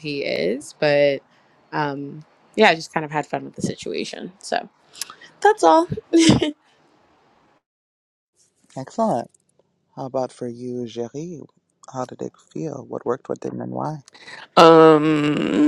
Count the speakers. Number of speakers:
3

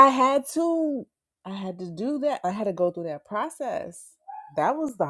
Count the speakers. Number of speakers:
1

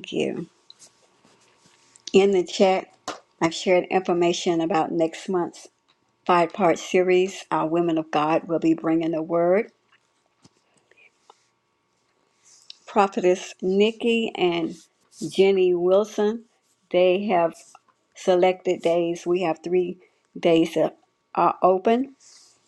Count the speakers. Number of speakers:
1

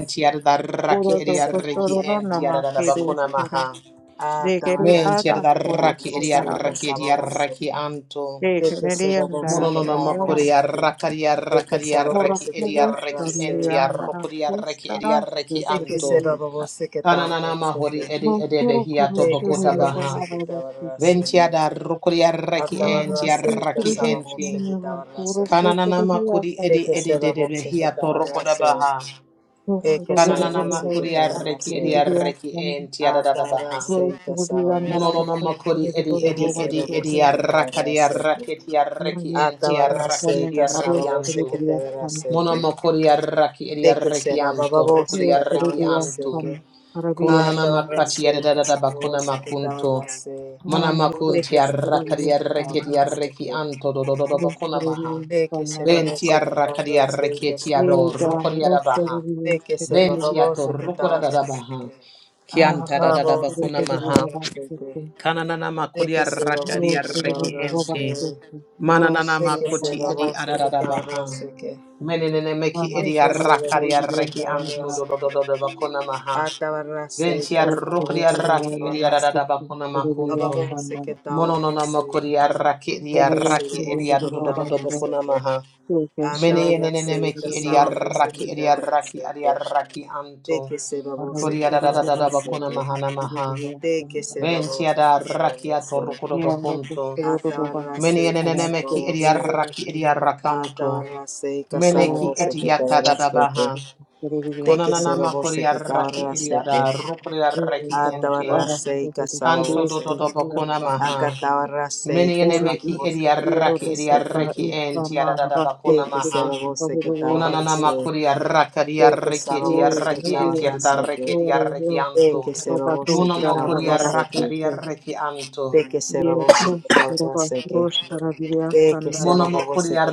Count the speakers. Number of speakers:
3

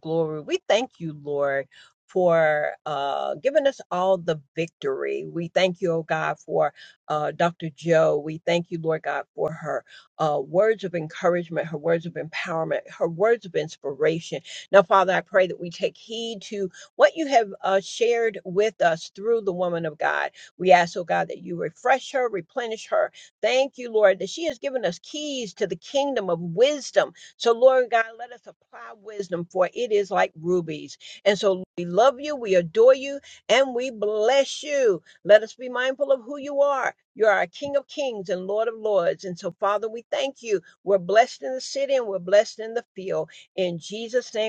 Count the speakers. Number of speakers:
1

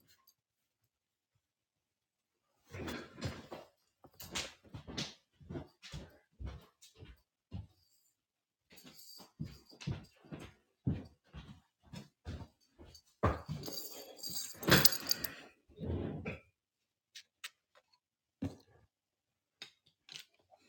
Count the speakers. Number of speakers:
0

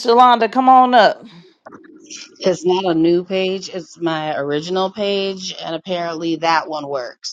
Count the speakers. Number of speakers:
2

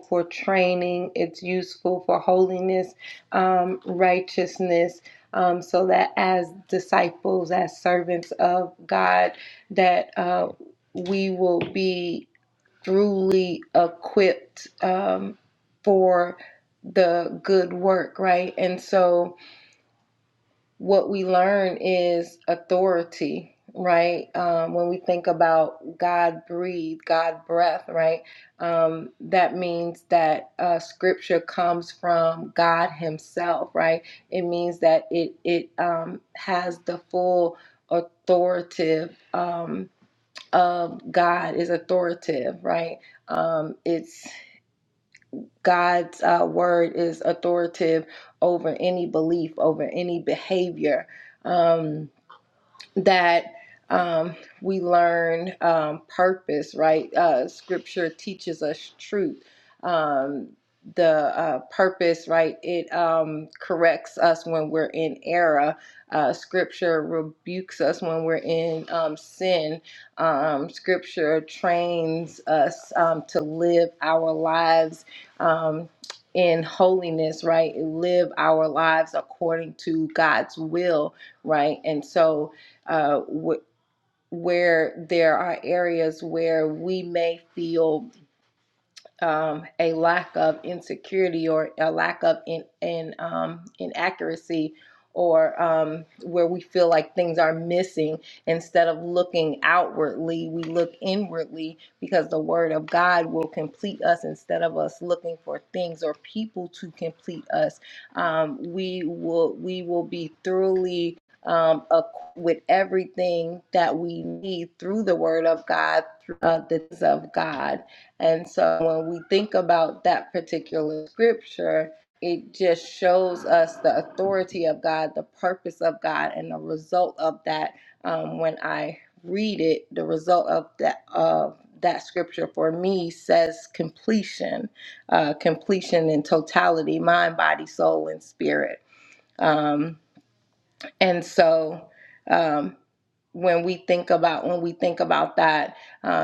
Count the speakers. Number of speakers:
1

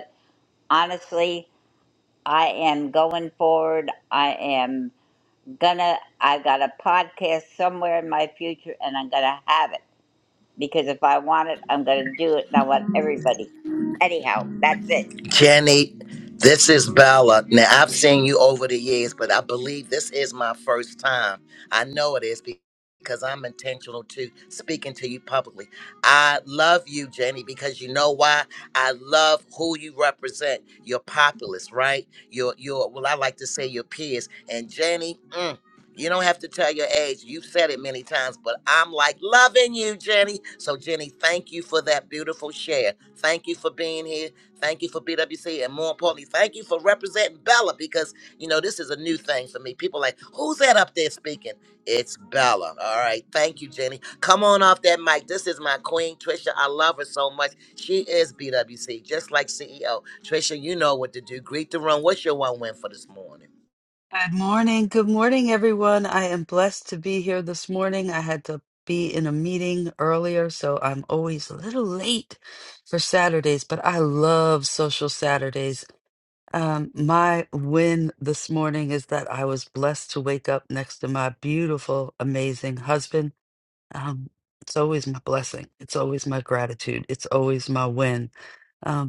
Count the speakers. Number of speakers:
3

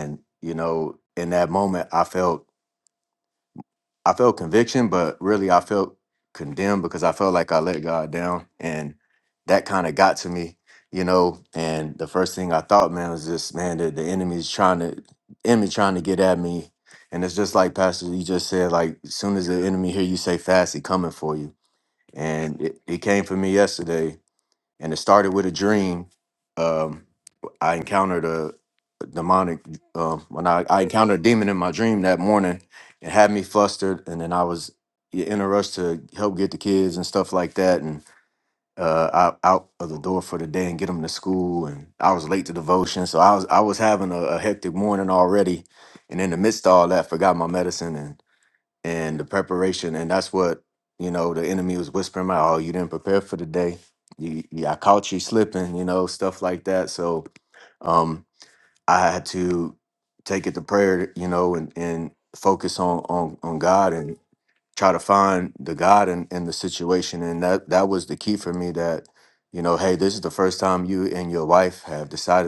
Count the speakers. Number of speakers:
1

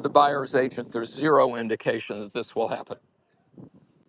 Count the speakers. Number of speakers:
1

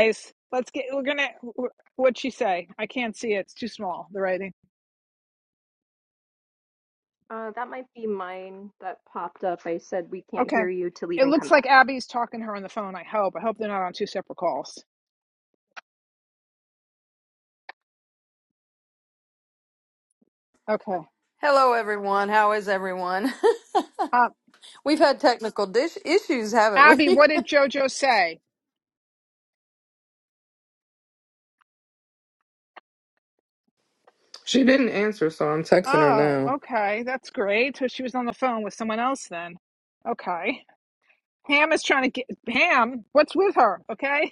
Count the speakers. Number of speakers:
4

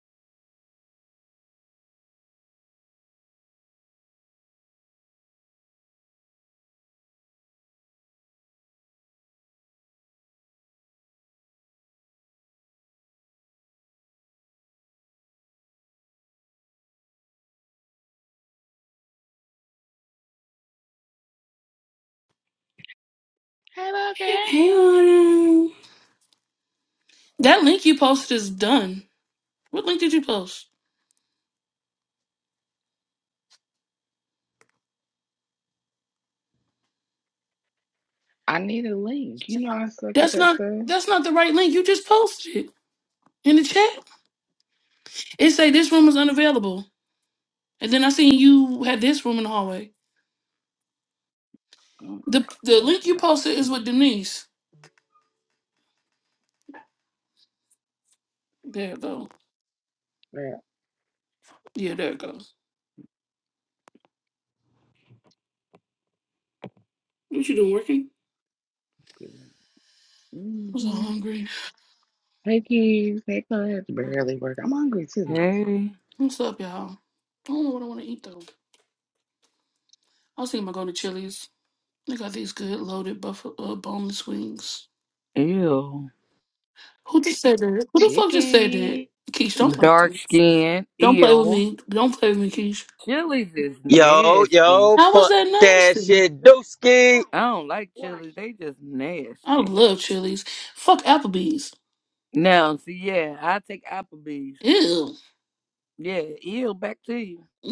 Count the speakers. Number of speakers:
4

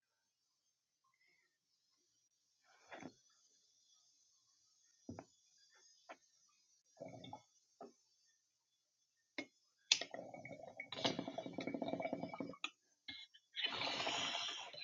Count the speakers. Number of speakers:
0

